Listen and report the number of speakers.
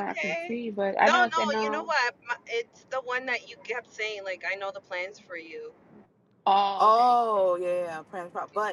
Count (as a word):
three